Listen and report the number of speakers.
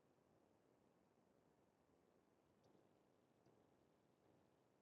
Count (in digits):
0